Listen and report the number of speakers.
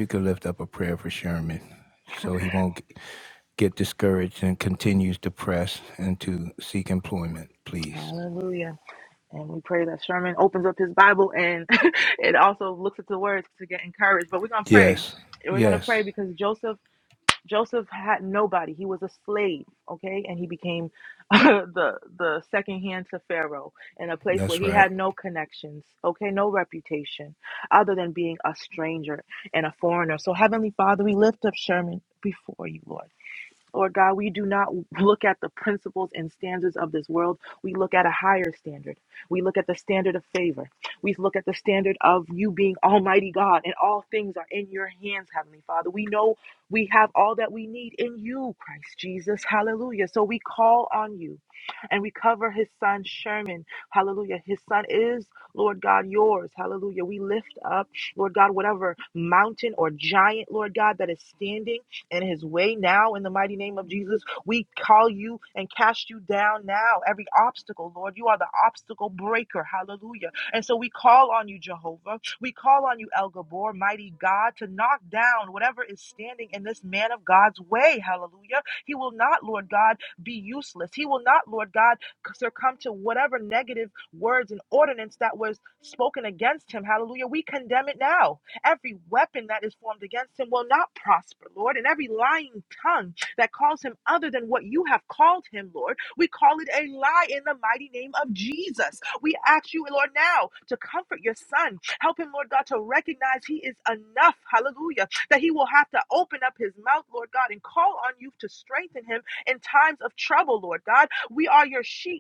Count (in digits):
2